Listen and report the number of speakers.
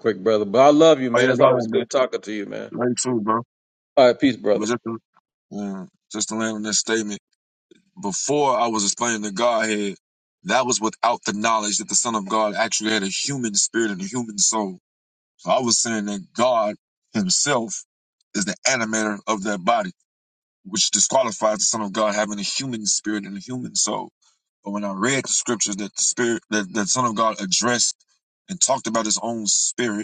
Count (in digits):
2